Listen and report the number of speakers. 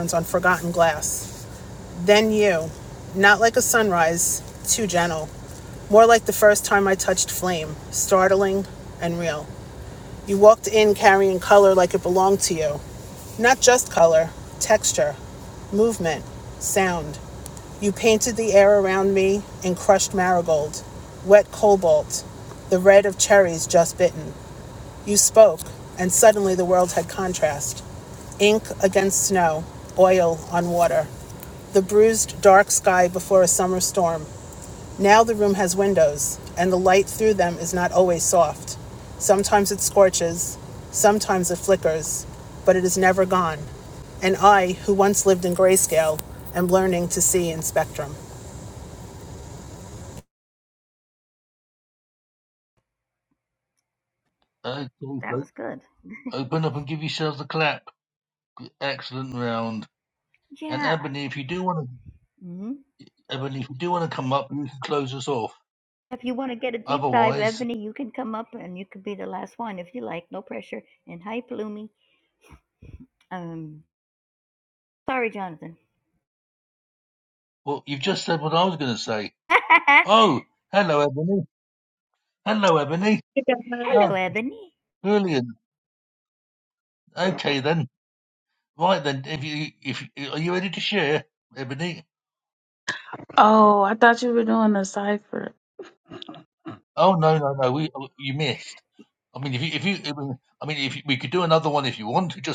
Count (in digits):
4